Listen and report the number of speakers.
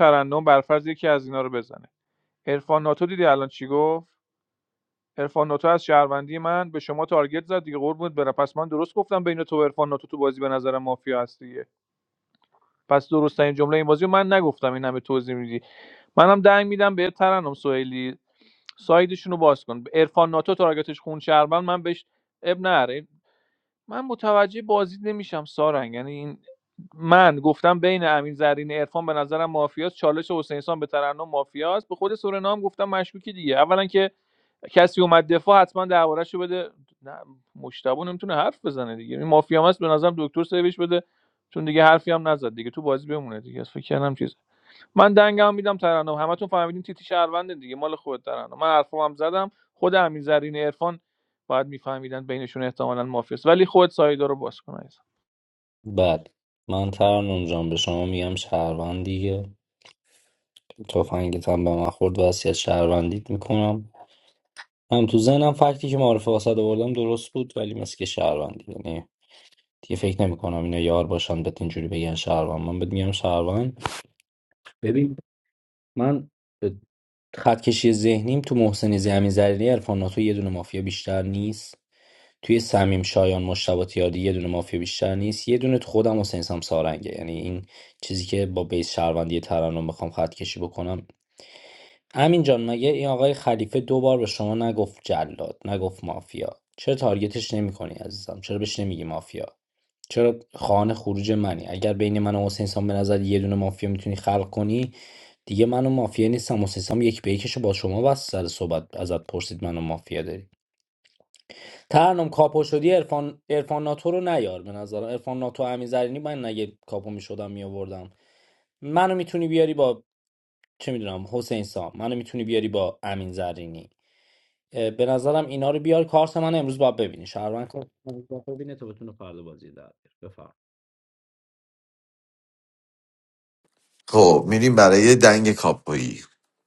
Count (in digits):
3